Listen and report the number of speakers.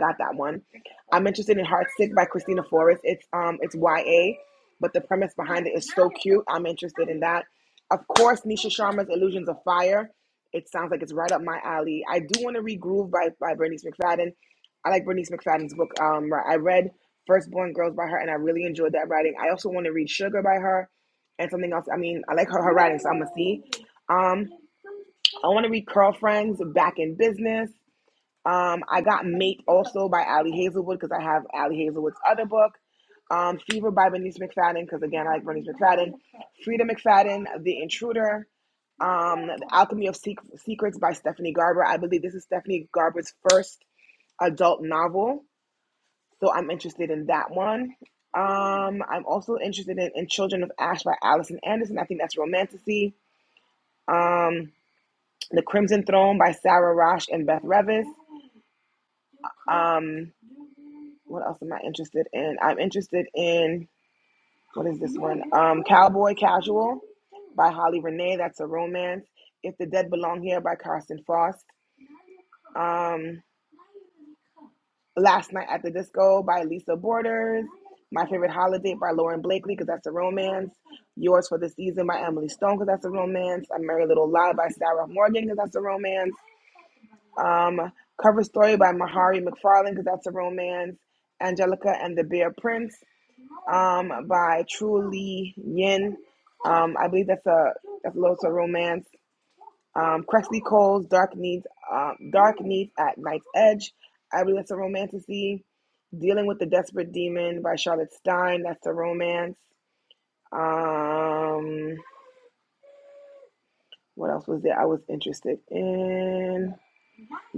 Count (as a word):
one